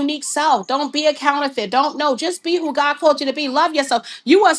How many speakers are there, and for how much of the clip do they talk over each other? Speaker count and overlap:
one, no overlap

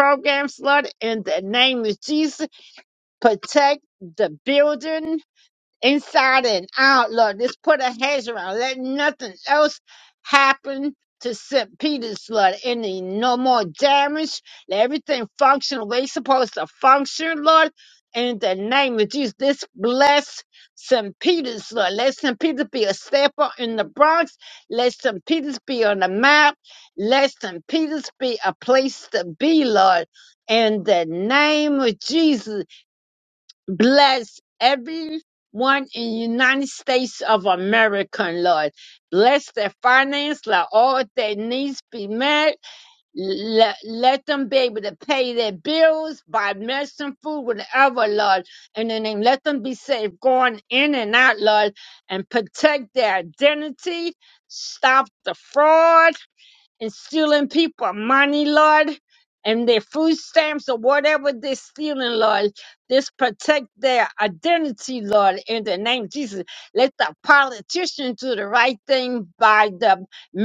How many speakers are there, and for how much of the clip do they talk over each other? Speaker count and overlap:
one, no overlap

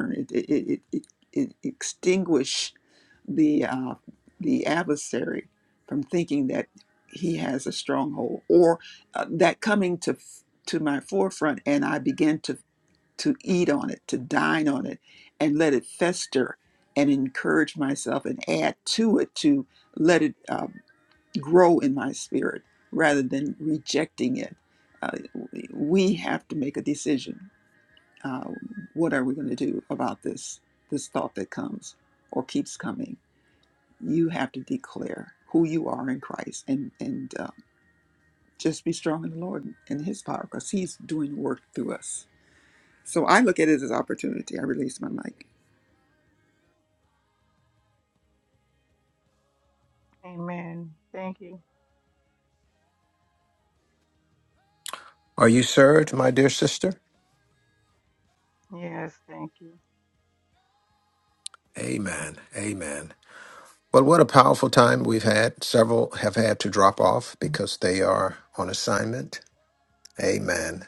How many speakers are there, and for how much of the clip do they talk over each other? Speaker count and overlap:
three, no overlap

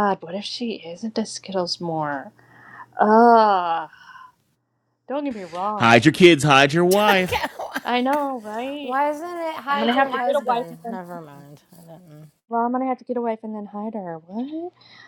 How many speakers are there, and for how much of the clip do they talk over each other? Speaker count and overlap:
three, about 12%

